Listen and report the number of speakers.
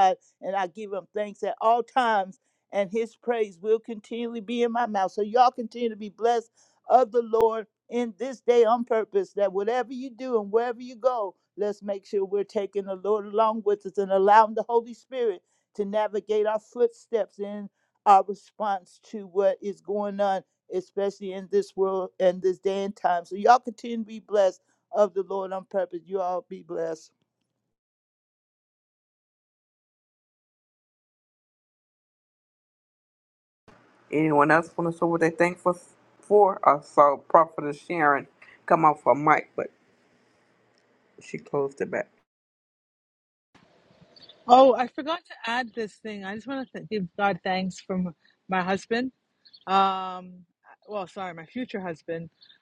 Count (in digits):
3